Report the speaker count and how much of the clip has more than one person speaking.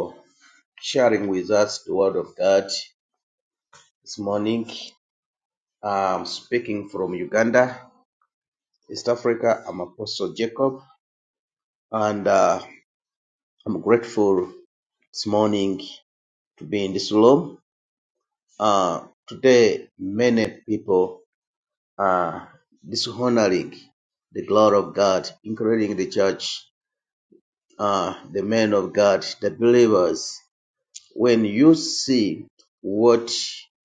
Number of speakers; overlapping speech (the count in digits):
1, no overlap